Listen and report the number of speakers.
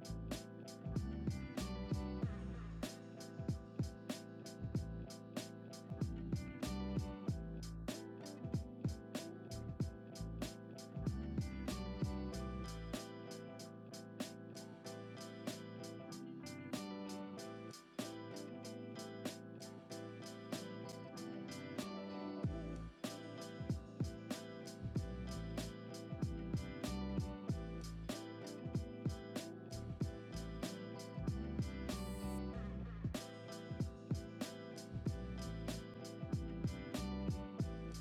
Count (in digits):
0